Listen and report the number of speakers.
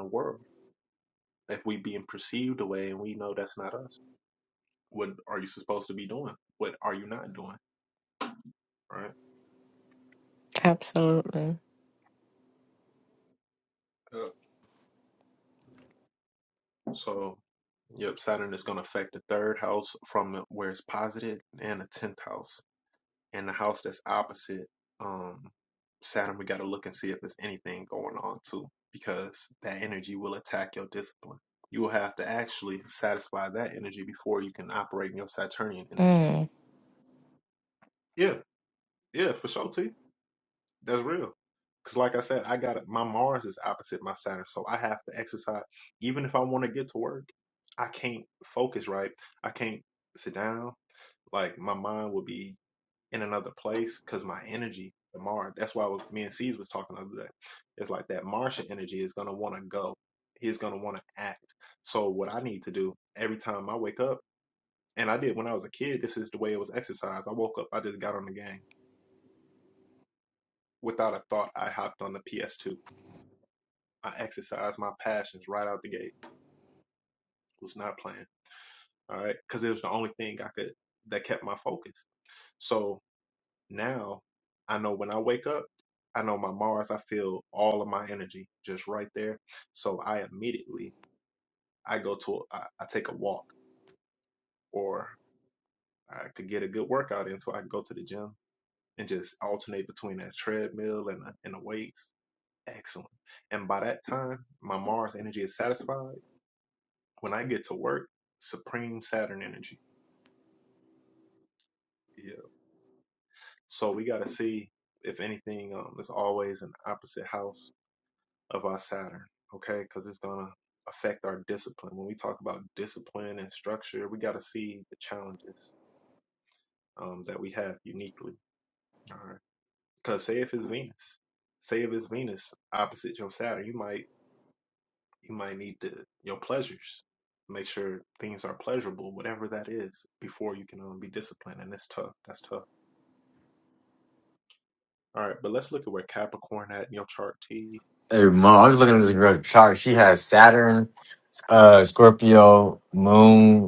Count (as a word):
three